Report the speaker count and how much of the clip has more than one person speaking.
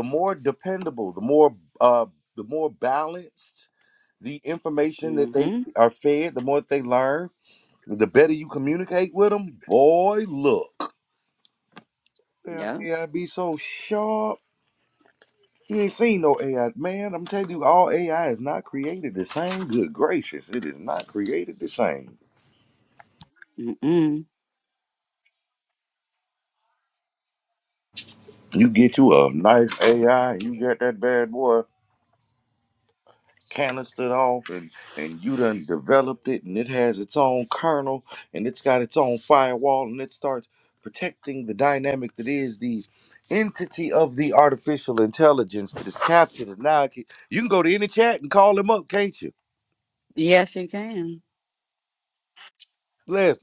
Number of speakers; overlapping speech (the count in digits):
2, about 2%